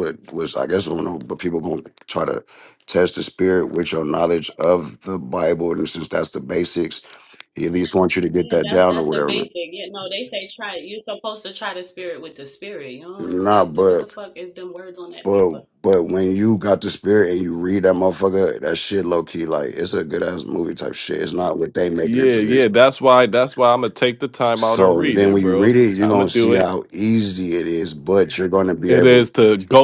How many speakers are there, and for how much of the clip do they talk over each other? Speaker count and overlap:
3, about 18%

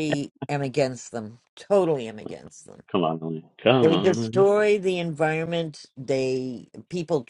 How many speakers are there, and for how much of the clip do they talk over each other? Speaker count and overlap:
2, about 8%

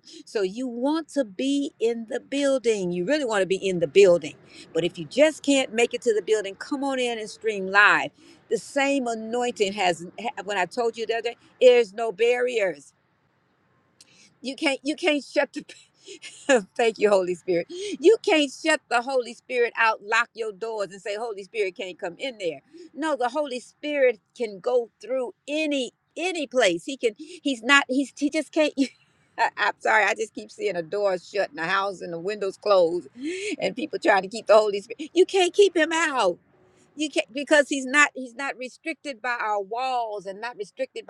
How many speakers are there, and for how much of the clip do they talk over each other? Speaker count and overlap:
1, no overlap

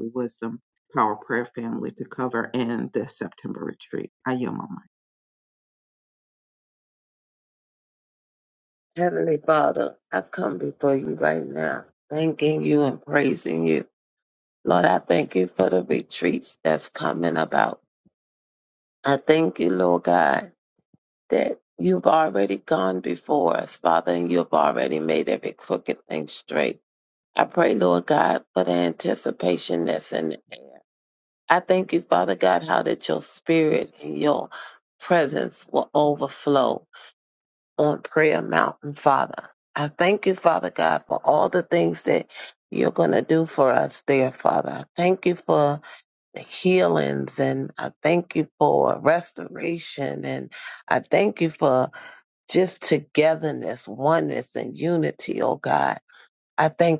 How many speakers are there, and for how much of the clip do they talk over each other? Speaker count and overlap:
2, no overlap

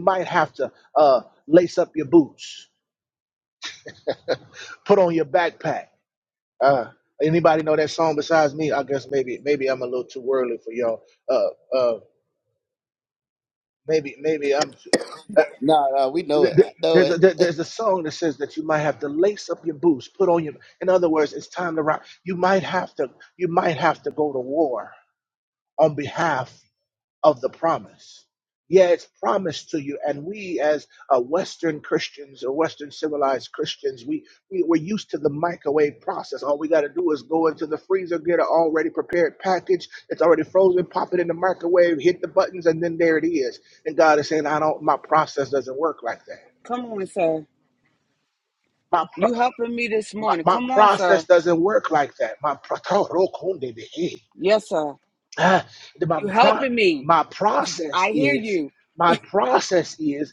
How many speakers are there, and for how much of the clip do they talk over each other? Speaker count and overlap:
3, about 5%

